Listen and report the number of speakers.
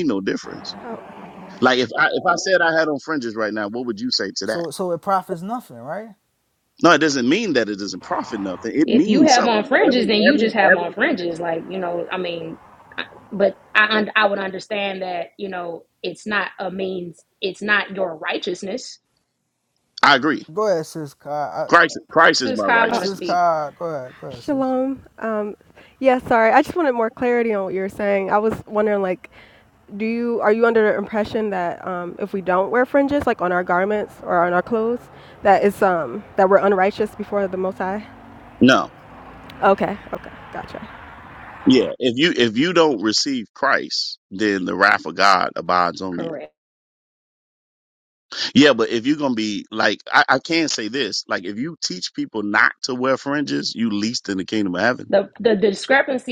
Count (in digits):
4